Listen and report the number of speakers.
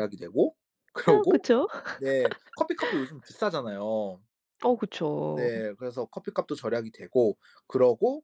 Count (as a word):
two